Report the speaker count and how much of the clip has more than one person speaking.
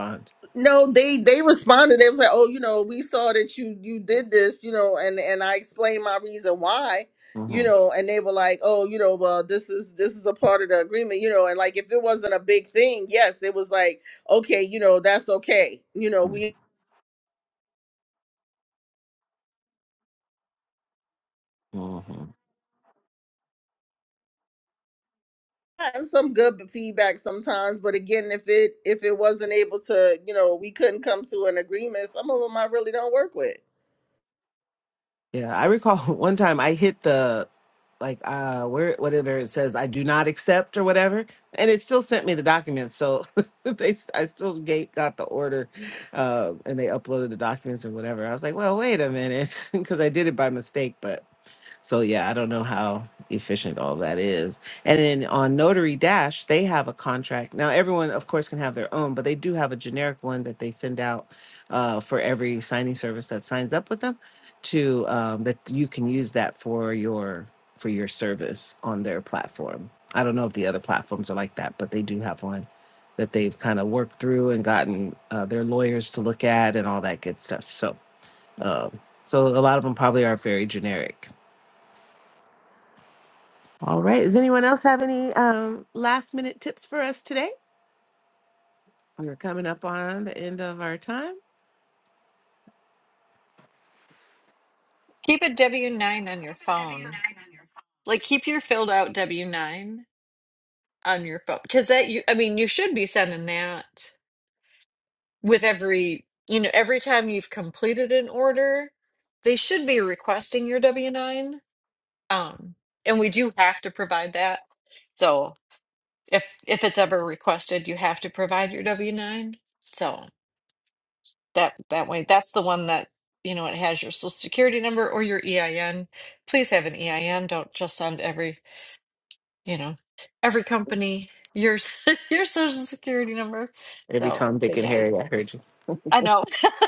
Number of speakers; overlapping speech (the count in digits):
3, about 1%